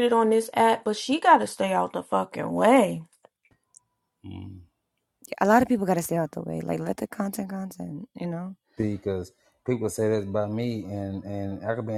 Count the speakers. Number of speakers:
three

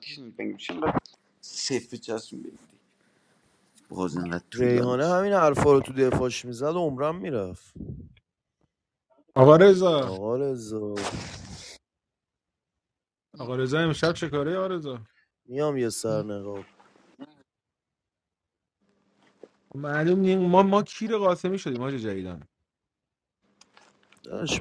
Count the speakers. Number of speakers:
three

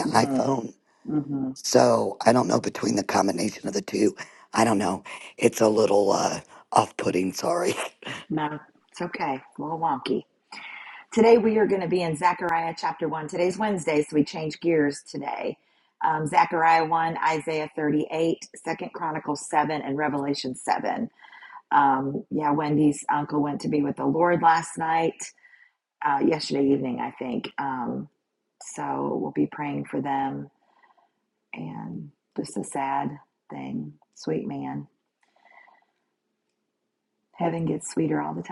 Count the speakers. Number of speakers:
two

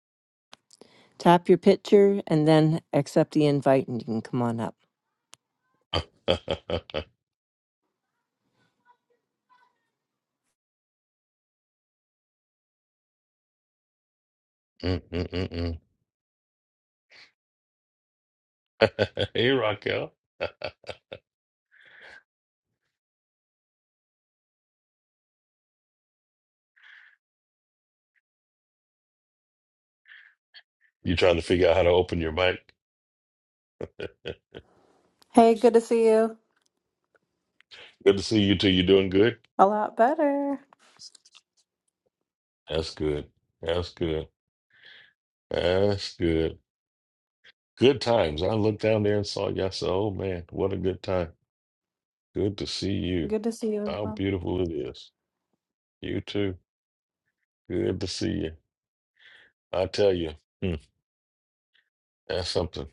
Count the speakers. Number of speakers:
three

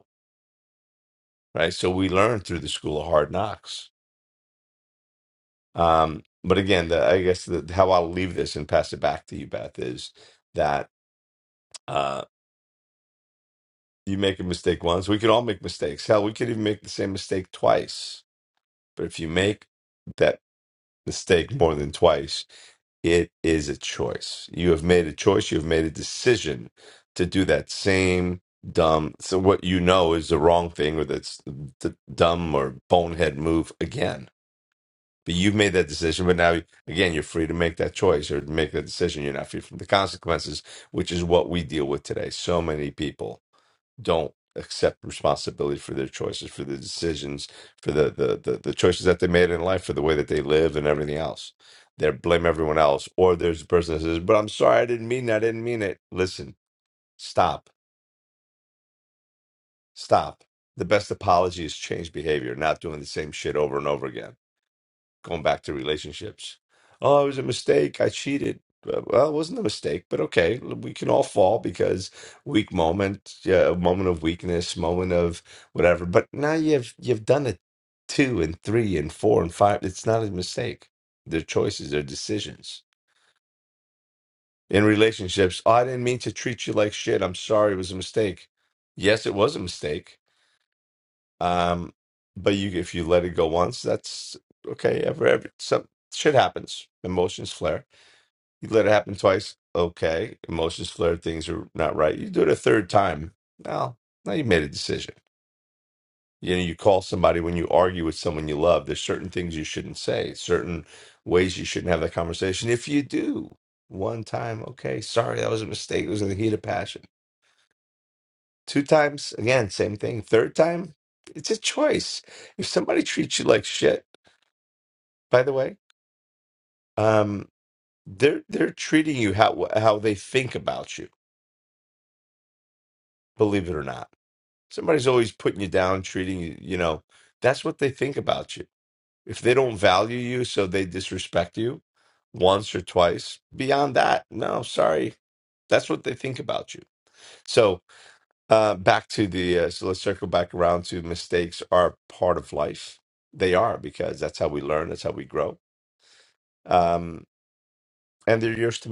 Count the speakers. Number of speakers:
one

